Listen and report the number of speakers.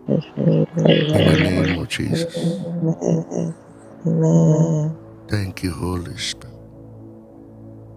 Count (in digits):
2